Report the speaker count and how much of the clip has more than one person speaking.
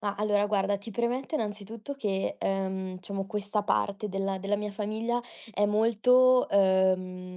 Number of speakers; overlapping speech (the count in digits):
1, no overlap